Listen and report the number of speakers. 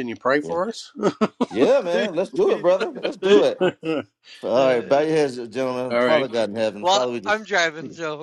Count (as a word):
three